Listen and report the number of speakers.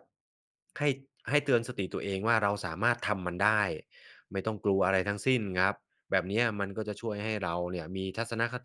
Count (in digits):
1